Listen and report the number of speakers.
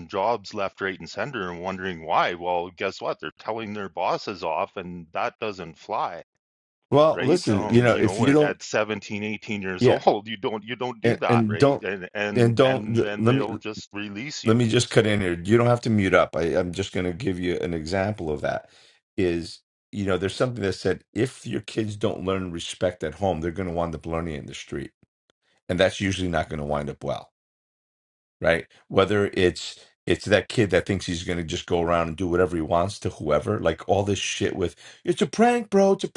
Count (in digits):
2